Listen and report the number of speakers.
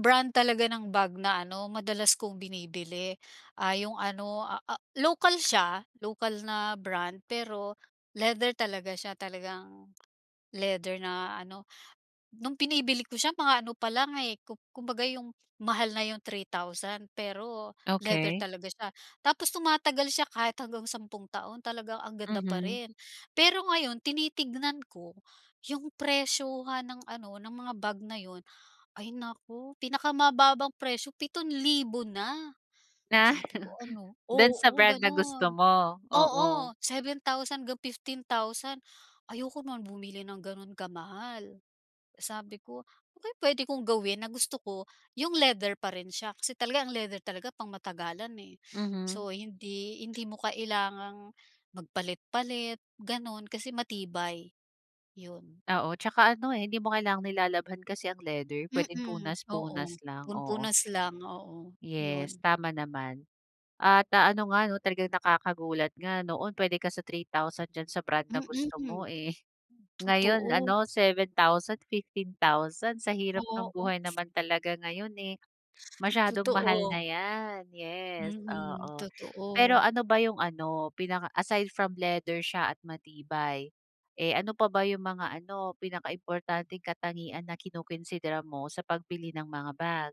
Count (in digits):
2